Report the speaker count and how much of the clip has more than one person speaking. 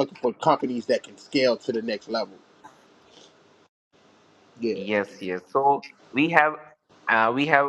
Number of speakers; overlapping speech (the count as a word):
two, about 1%